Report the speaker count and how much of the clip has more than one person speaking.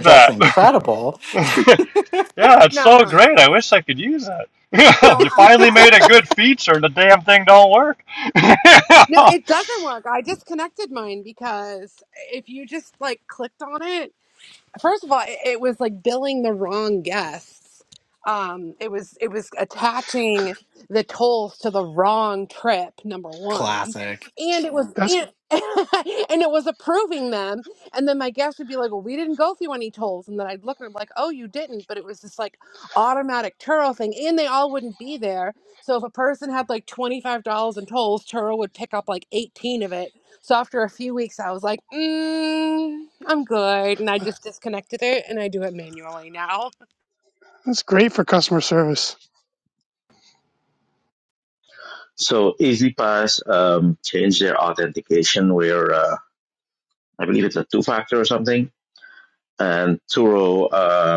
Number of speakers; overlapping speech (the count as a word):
five, about 3%